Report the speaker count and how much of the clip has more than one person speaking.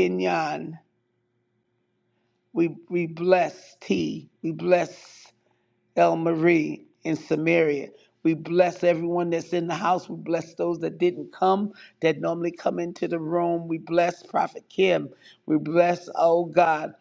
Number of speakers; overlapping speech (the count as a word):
one, no overlap